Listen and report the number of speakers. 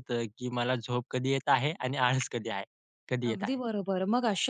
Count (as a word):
two